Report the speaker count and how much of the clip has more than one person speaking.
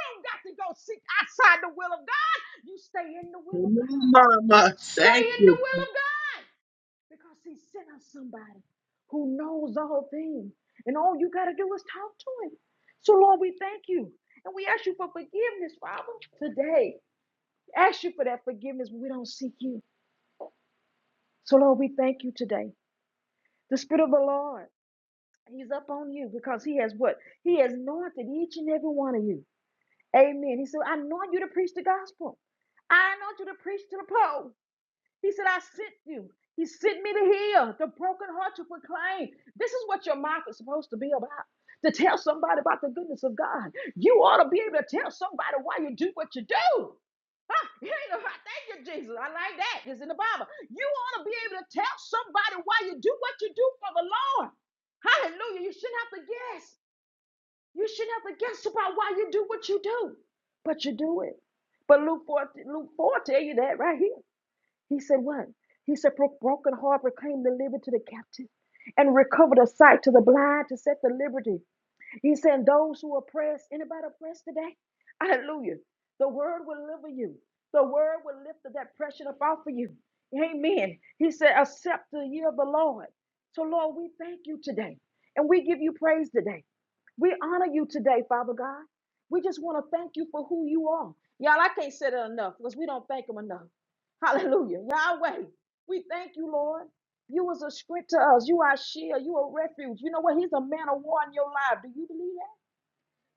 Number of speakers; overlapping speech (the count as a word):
two, about 1%